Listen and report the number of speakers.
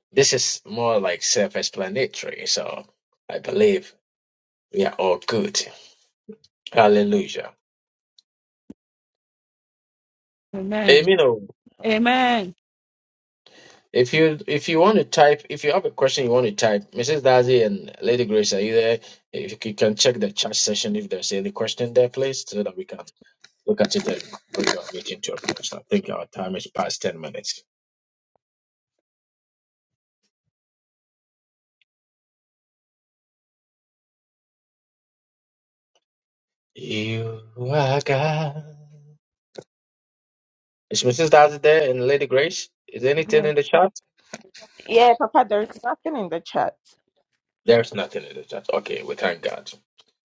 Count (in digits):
3